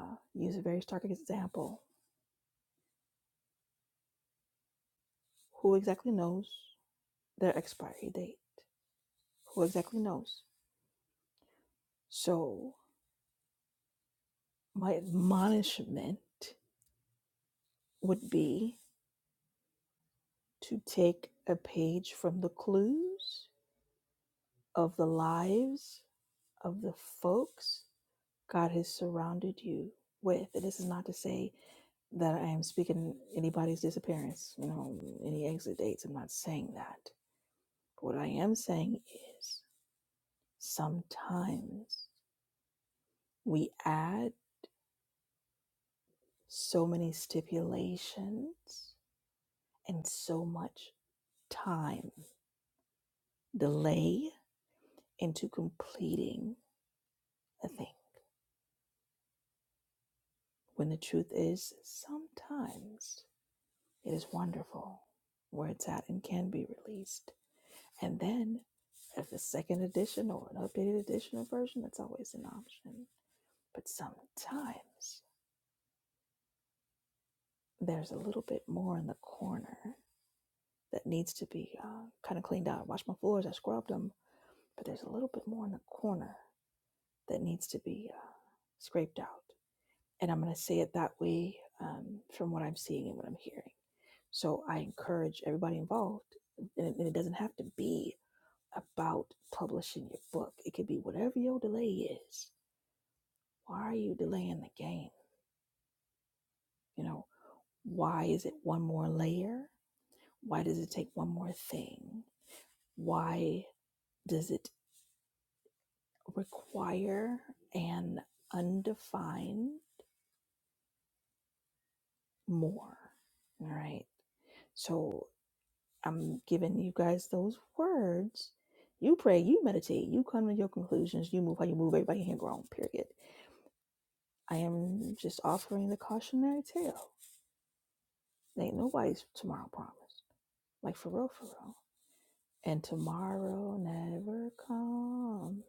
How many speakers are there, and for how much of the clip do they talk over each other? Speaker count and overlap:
one, no overlap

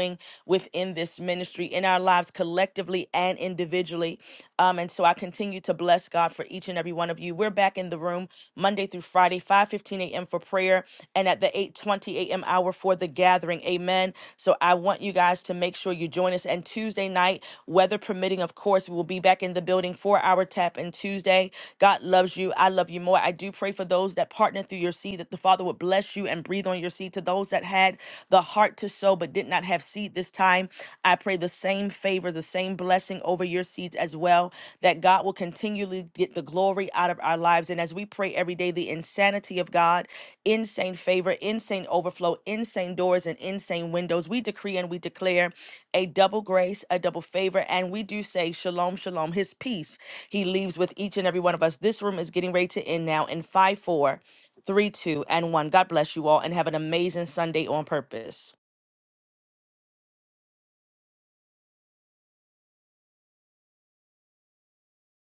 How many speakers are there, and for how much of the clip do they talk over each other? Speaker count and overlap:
one, no overlap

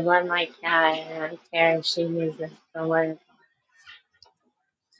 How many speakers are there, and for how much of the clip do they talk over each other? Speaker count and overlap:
one, no overlap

